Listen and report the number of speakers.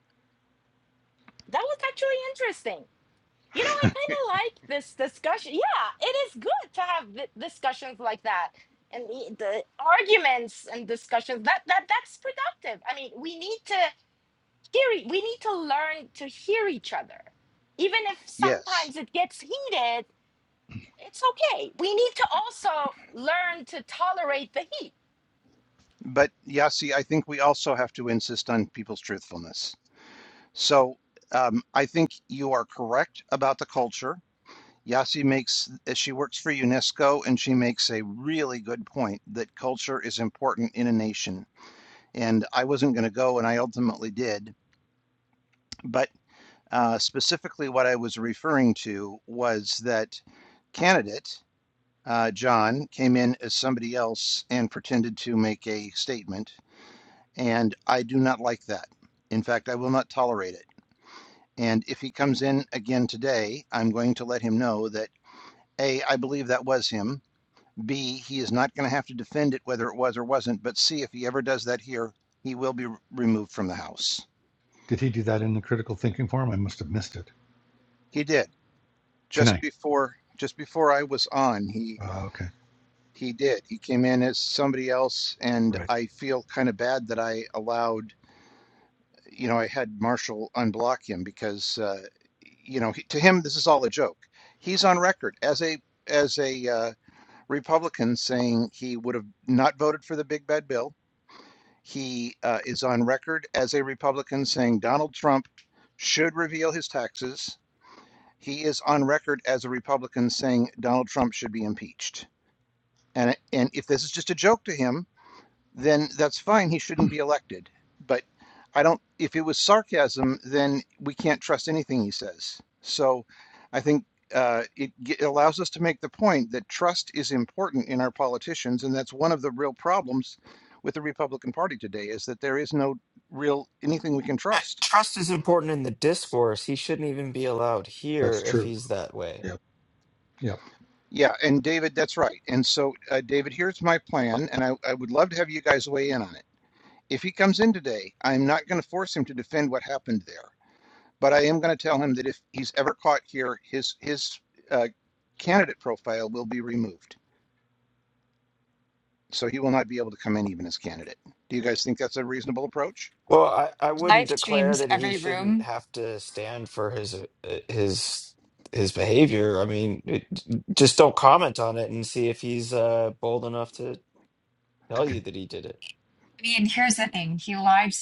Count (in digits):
5